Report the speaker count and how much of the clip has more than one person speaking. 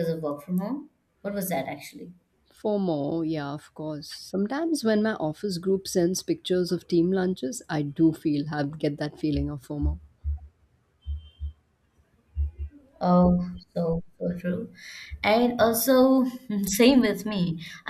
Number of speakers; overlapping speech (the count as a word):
two, no overlap